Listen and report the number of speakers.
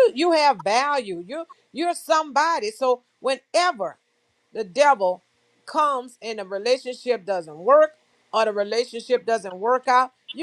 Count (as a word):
one